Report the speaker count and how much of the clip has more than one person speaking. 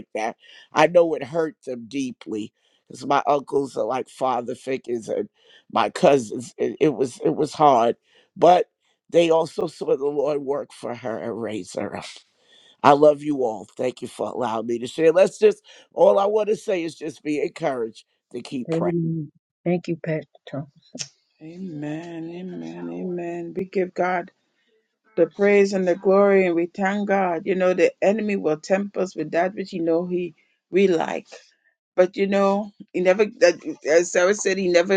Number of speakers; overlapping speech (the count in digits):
3, about 1%